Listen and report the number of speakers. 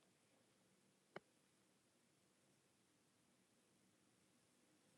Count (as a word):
zero